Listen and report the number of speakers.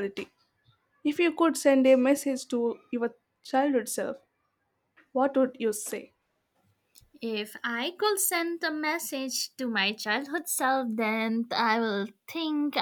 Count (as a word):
two